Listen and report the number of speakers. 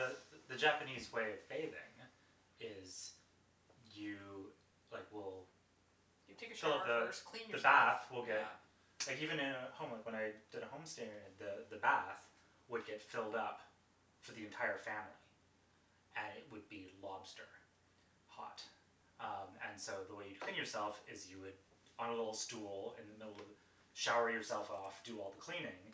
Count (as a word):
two